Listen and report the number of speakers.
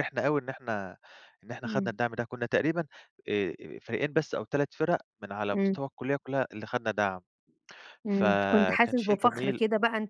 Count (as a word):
two